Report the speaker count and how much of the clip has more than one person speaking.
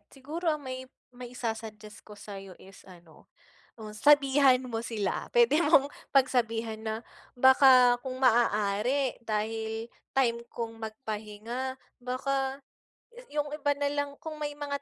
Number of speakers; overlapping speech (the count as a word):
one, no overlap